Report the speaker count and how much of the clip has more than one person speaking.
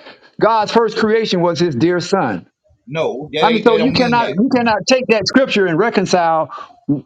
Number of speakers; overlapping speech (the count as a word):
two, about 13%